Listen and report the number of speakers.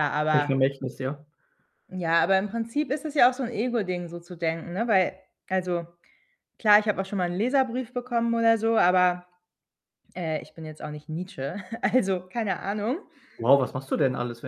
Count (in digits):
2